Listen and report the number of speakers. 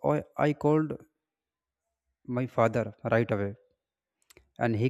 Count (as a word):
one